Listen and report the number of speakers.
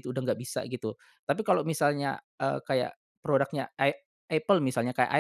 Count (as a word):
one